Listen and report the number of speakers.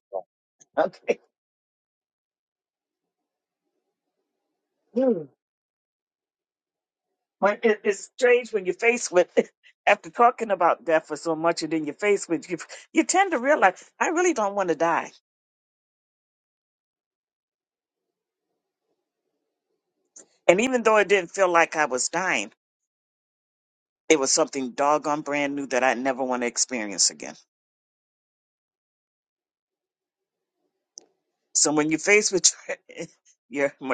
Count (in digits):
1